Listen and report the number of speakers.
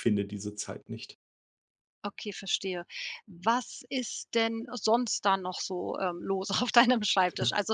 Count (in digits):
2